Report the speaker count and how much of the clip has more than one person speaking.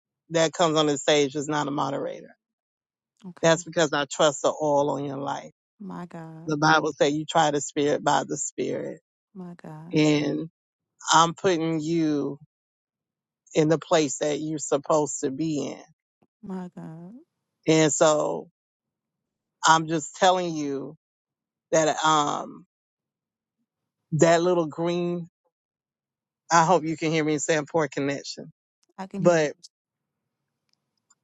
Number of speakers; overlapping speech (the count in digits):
2, about 1%